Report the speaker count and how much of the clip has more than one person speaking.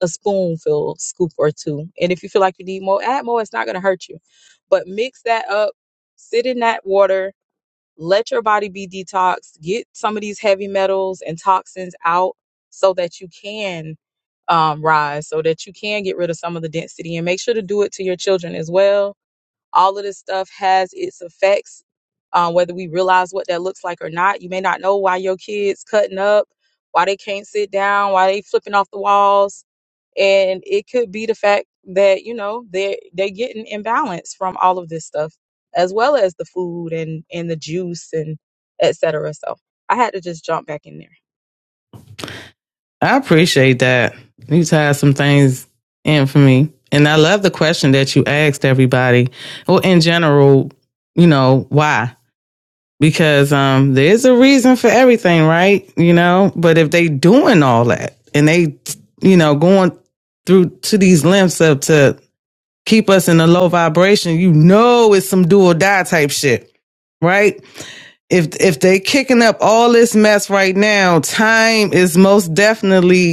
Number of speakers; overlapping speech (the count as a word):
two, no overlap